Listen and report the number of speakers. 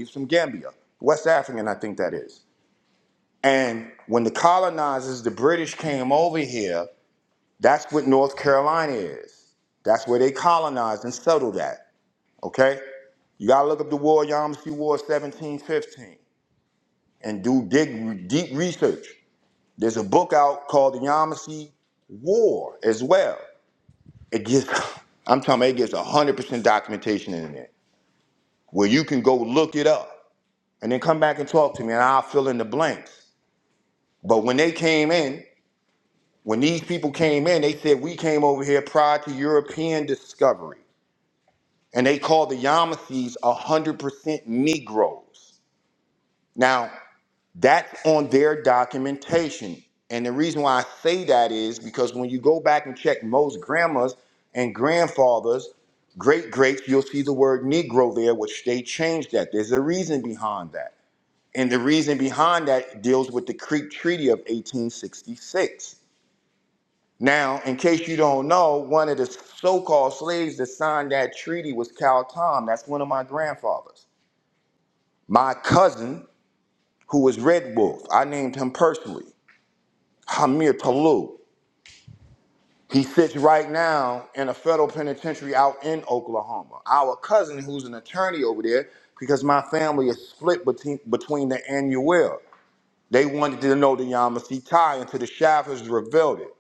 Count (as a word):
one